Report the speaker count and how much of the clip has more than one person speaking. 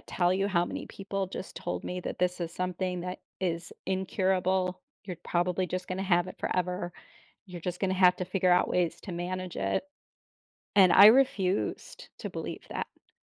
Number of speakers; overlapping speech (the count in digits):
1, no overlap